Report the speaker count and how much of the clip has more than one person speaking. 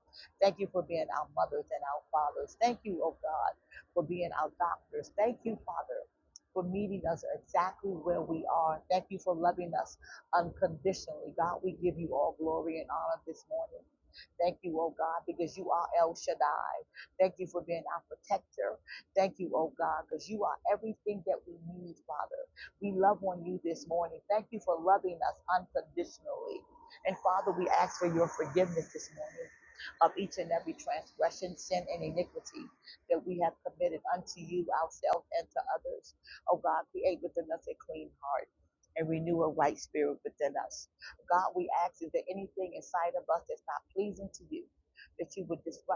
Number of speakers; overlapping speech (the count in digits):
1, no overlap